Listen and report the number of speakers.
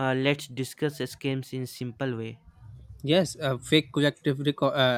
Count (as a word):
two